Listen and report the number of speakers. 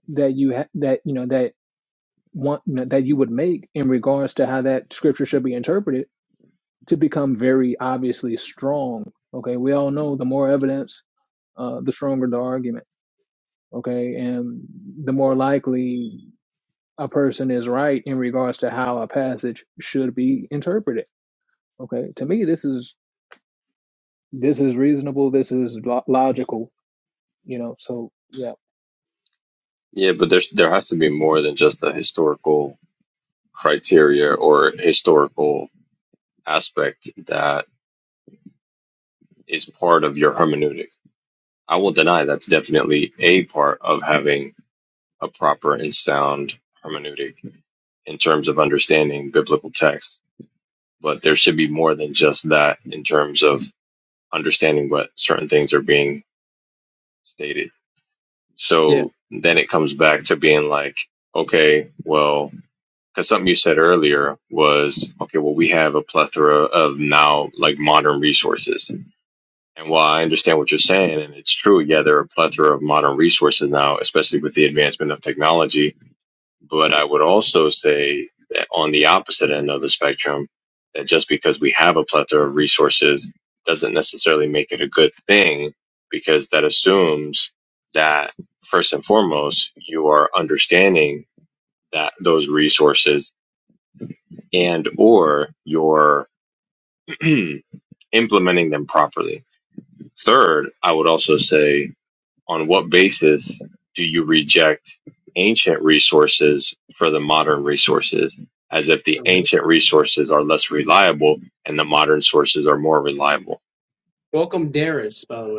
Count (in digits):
3